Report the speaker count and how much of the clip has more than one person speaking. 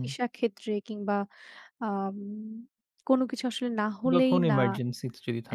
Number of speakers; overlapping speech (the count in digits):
2, about 12%